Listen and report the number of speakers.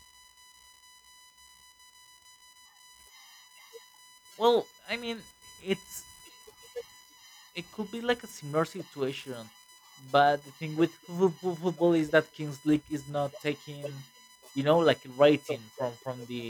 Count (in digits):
1